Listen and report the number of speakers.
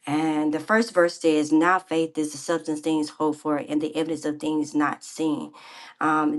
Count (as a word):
one